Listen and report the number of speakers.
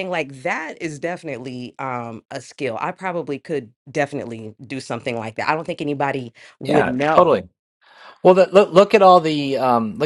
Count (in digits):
2